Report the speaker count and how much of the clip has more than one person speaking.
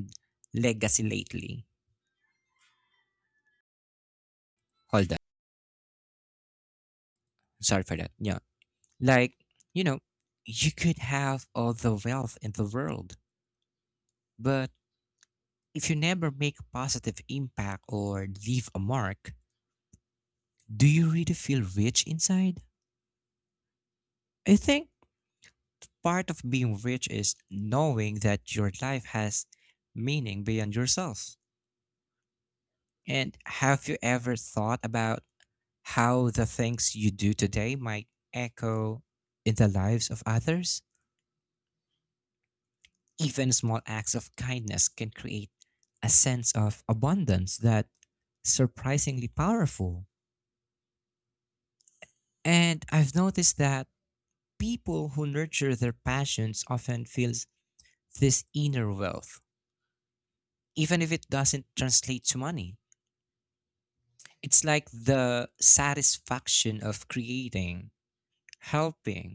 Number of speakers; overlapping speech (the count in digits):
1, no overlap